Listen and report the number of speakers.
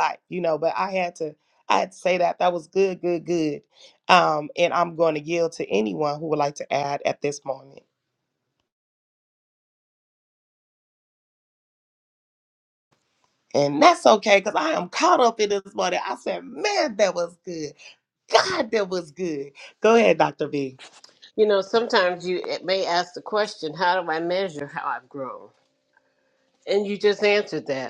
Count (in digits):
2